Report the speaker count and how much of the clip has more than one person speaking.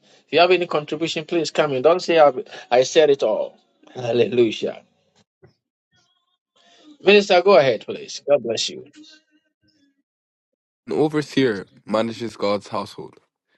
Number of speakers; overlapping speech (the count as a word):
two, no overlap